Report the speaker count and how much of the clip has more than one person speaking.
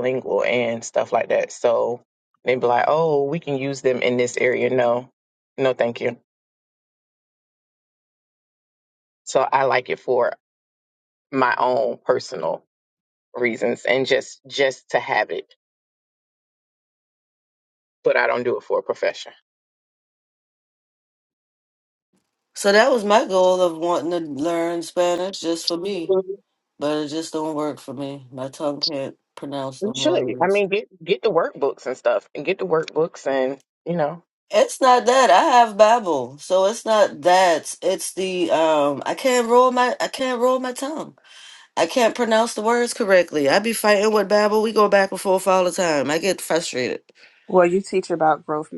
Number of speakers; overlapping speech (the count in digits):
3, about 1%